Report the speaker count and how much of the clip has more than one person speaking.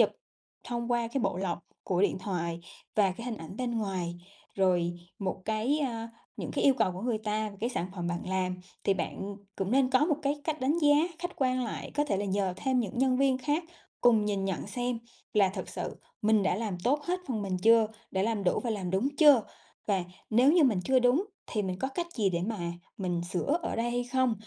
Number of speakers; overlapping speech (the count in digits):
1, no overlap